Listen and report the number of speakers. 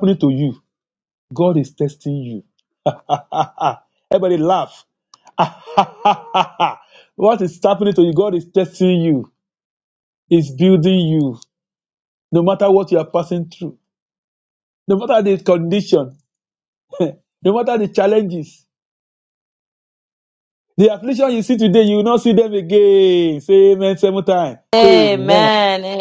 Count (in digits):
2